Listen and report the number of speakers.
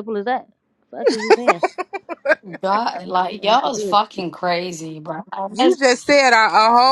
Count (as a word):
three